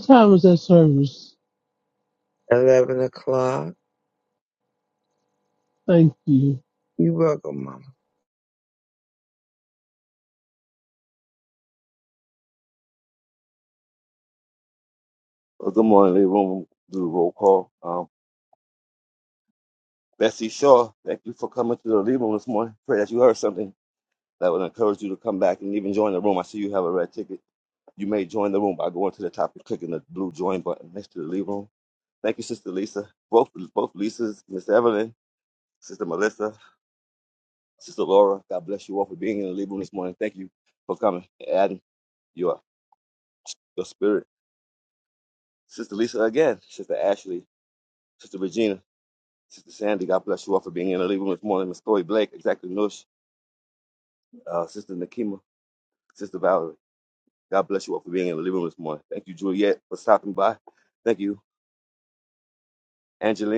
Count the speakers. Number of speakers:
3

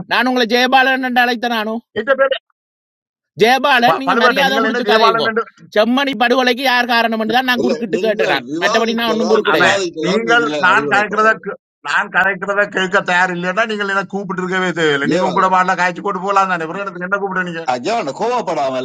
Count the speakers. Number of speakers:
3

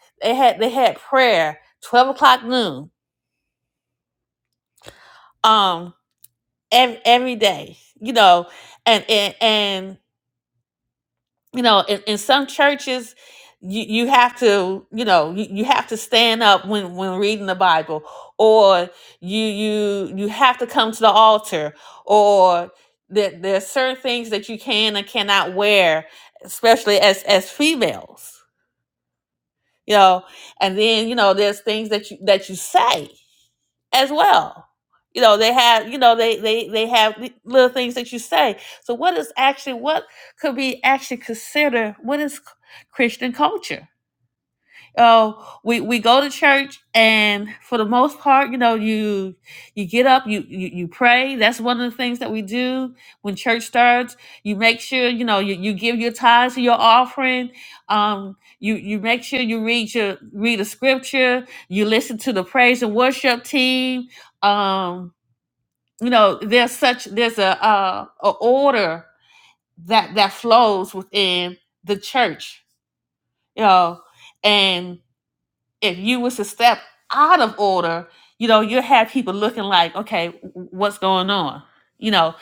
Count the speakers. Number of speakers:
1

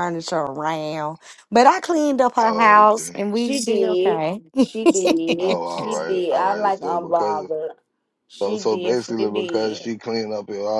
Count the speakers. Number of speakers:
3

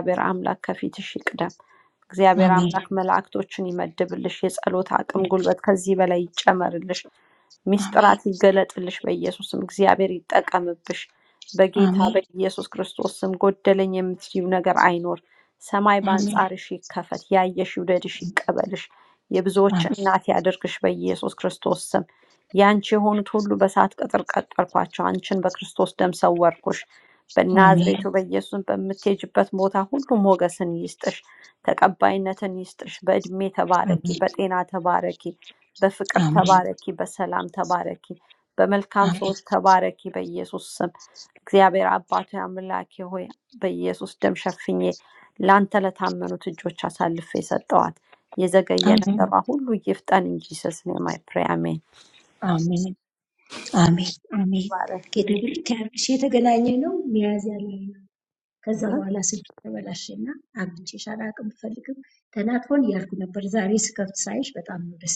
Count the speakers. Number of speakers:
2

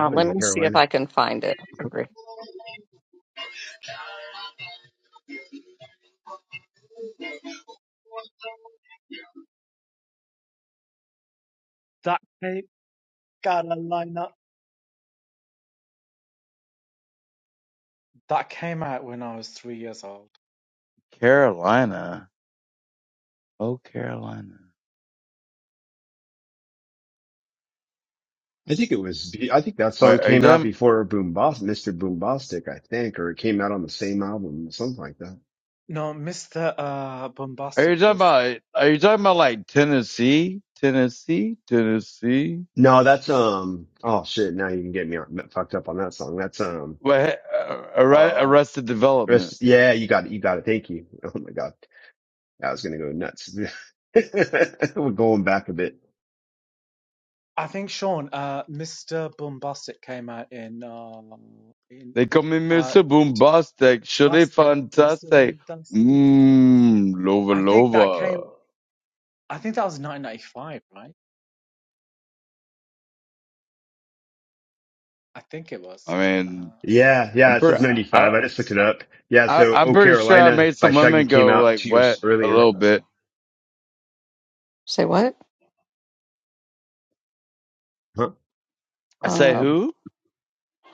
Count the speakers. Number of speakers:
4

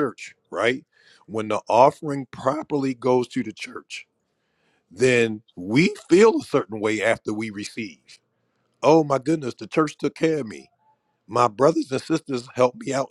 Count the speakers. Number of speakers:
1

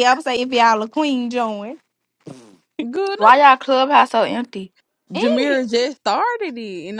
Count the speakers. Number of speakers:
3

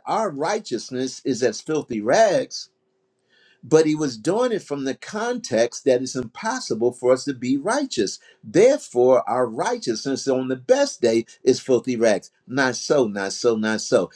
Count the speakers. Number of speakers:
1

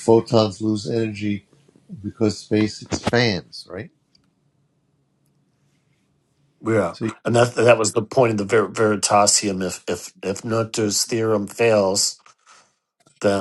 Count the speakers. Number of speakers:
2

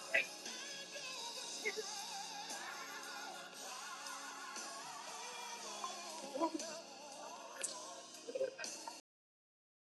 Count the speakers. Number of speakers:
0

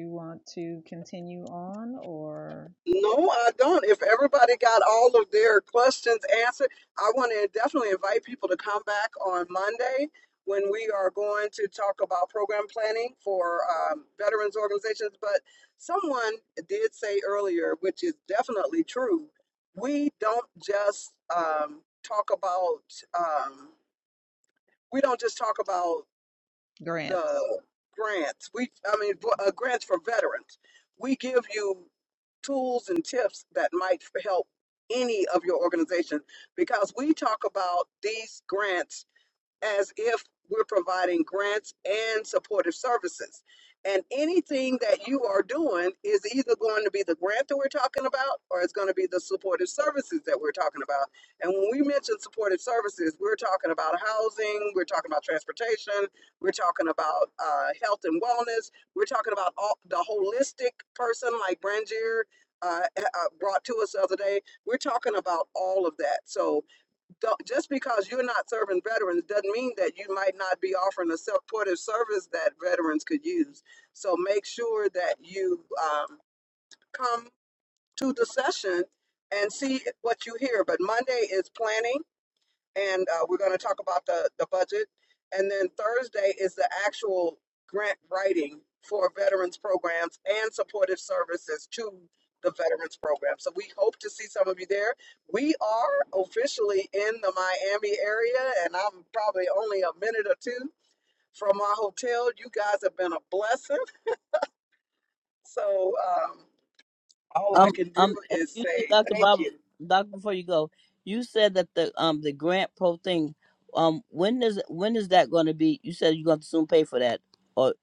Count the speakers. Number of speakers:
3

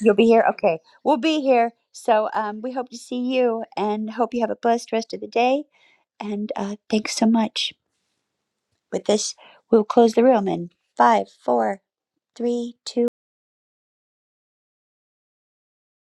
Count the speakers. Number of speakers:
1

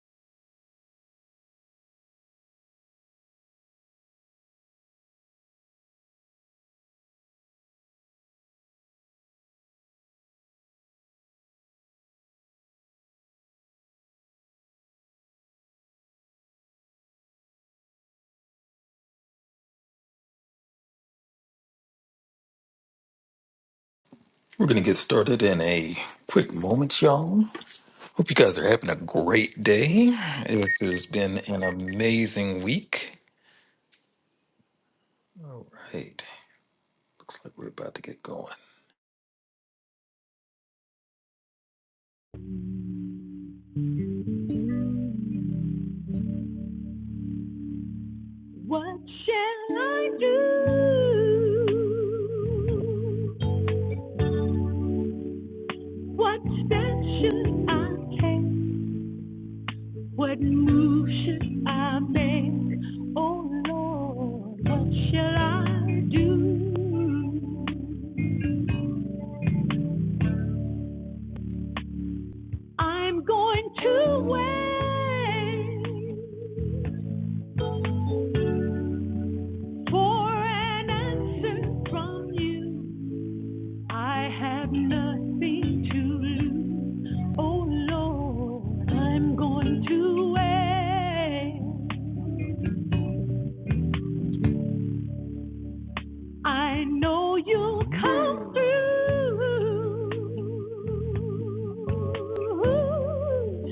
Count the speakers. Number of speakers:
2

